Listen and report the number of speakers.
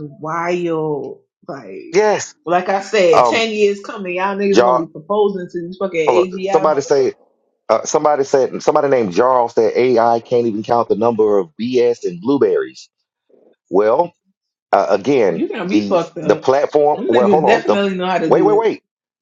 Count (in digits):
2